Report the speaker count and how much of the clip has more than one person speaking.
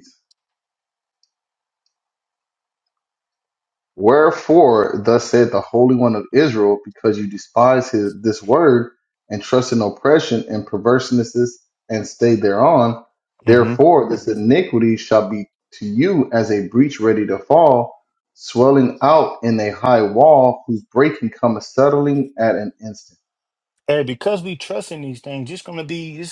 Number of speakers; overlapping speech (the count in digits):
2, no overlap